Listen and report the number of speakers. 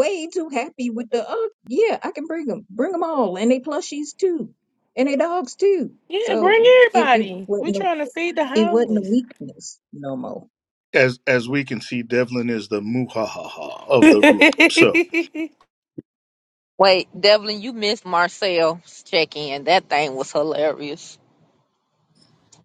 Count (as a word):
four